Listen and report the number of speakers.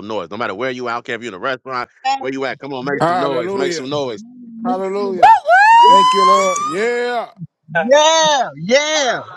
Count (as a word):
four